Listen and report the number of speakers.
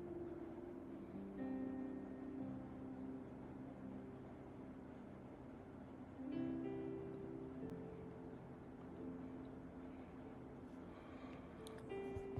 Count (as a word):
zero